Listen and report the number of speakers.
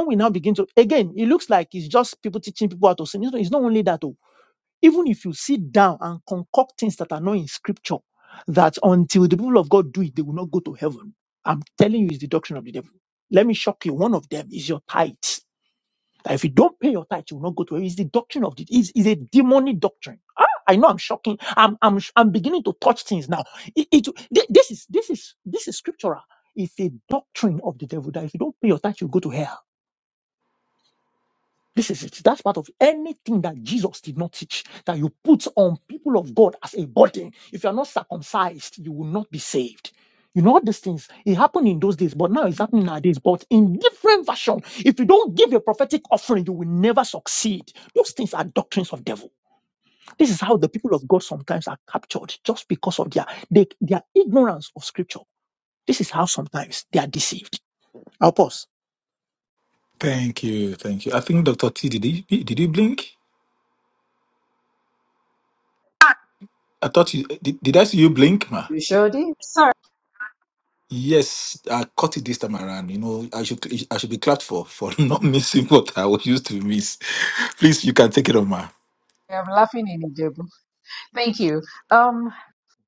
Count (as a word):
three